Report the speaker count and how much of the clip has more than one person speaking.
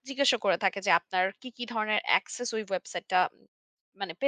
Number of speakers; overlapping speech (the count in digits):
1, no overlap